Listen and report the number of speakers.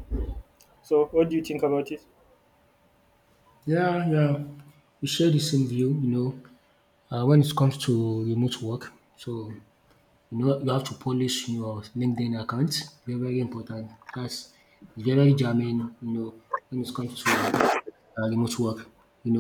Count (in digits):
2